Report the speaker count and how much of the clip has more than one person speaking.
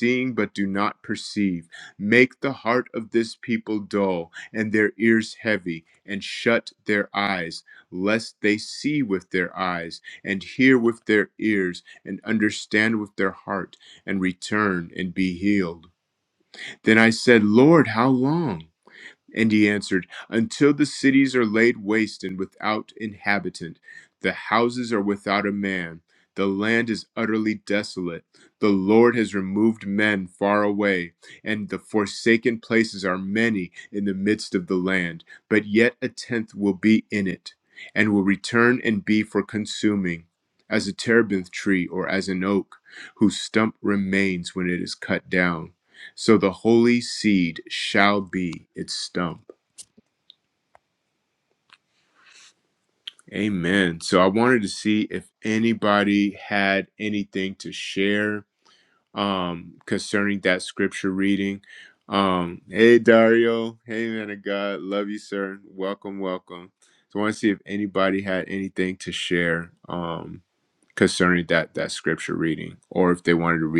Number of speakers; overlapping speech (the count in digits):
1, no overlap